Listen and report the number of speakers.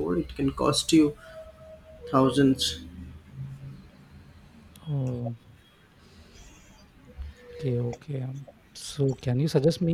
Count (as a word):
two